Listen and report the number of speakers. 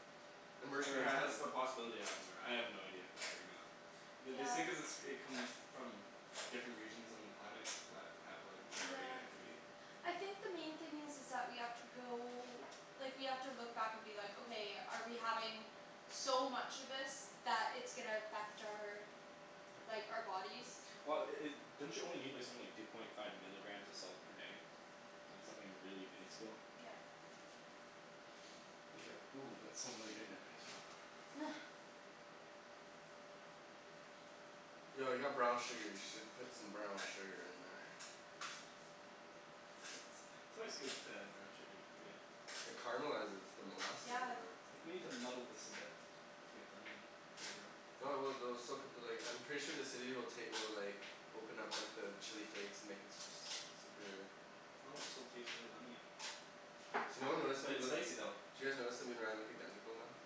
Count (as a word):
three